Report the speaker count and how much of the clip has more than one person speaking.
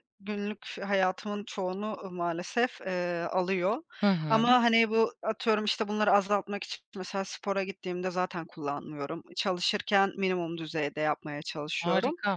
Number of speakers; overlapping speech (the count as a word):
two, about 5%